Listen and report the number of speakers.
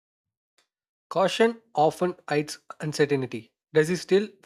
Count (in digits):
1